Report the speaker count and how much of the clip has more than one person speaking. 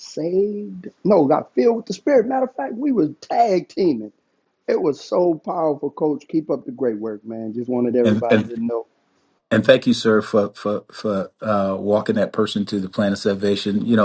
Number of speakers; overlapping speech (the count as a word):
two, about 3%